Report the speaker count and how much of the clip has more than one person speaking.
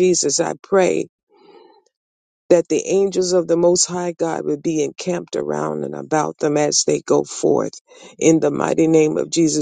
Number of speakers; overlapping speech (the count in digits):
1, no overlap